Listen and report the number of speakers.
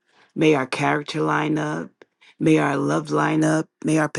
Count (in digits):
1